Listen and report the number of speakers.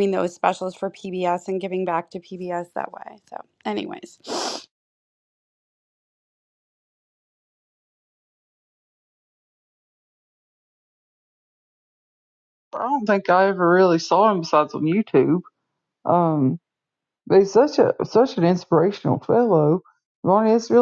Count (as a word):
two